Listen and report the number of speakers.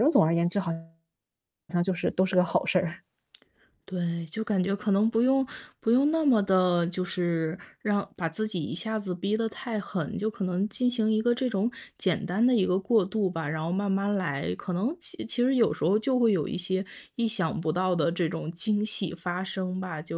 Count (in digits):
2